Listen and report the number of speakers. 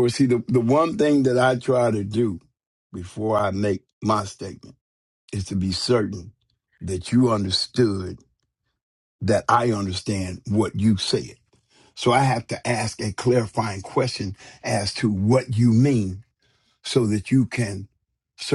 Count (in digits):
1